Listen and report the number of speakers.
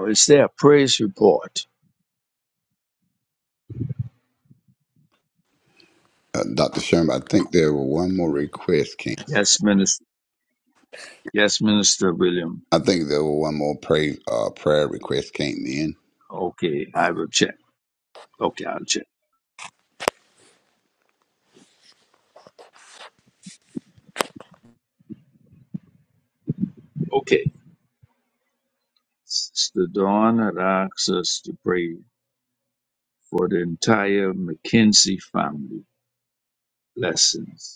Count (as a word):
two